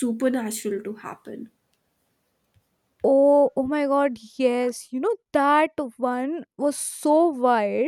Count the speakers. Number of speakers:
2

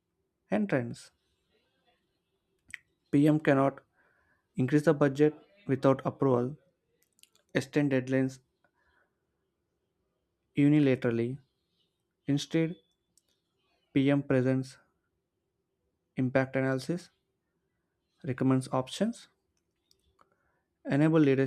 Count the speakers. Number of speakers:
1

